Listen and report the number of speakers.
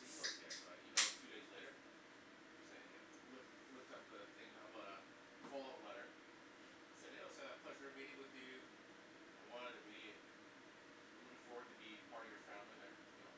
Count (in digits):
1